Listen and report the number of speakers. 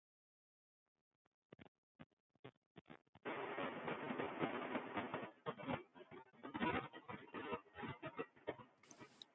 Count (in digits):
0